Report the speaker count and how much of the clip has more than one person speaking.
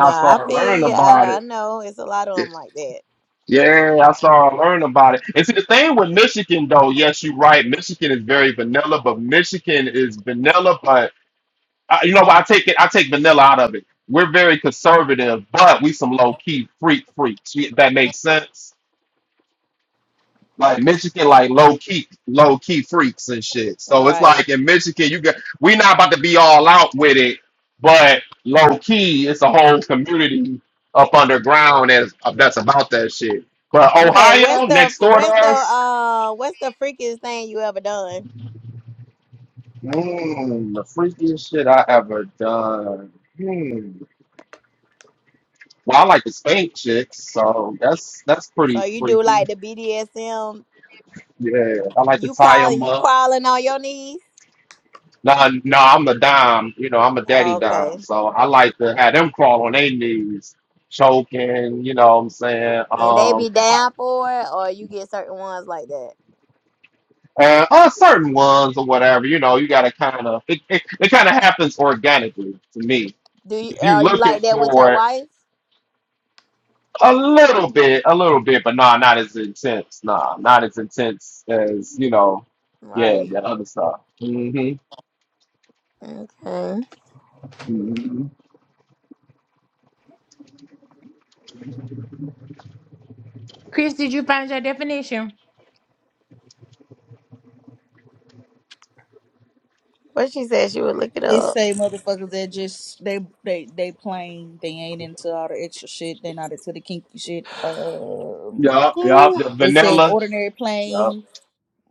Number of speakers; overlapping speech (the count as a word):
four, about 8%